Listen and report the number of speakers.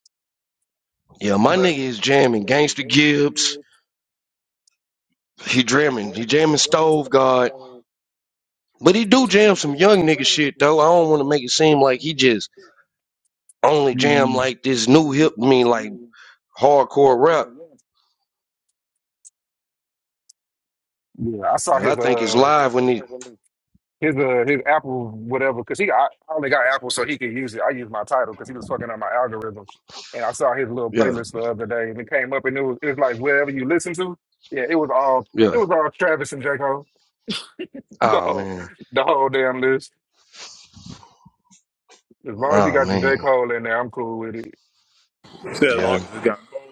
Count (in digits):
3